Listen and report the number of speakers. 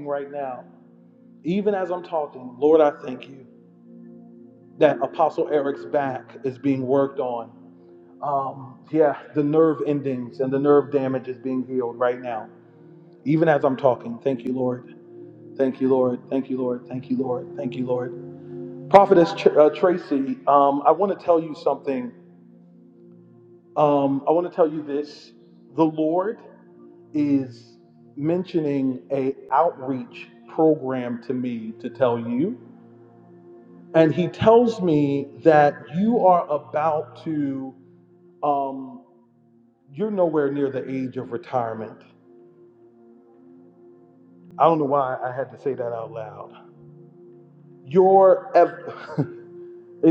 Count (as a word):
one